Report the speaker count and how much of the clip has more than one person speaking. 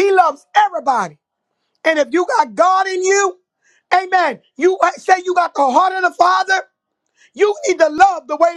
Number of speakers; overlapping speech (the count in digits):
1, no overlap